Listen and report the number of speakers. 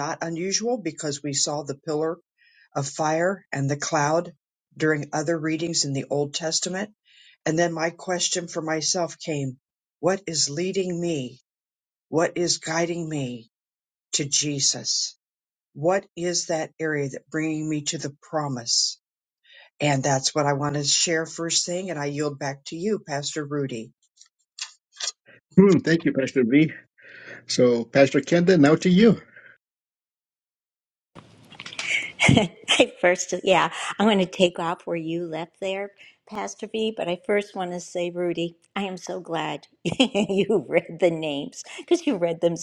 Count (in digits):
3